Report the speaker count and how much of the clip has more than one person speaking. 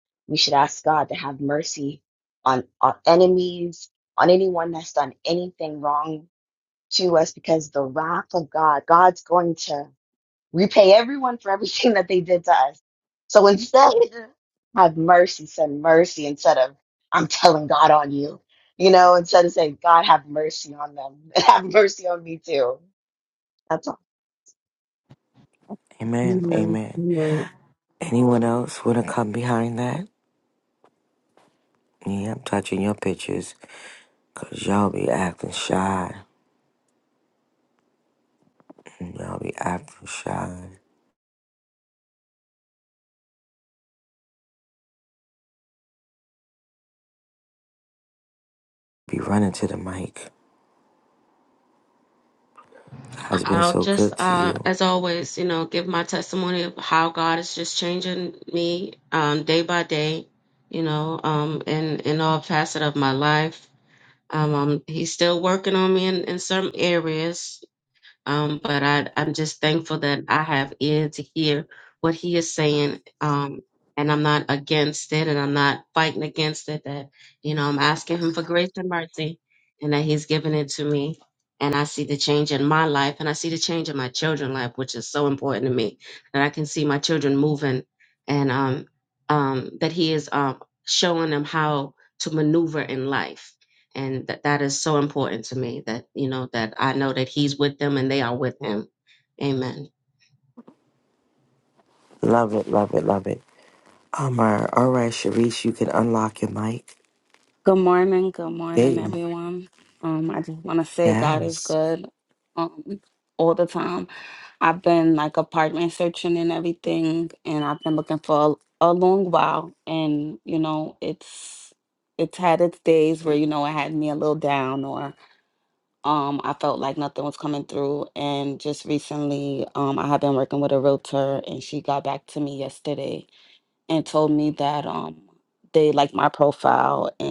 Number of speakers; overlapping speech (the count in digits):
4, about 2%